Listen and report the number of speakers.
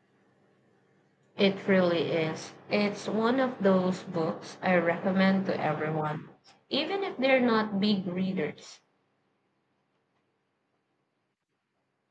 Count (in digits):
1